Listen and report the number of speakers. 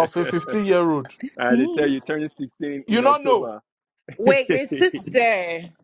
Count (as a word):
three